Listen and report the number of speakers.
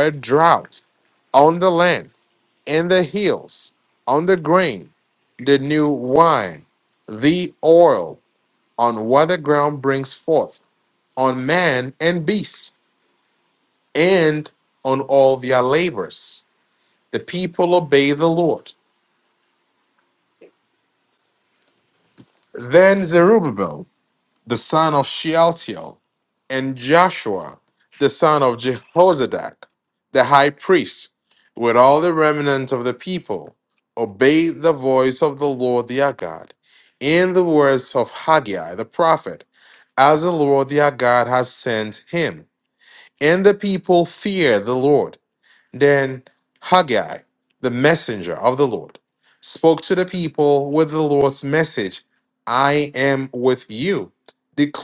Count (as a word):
one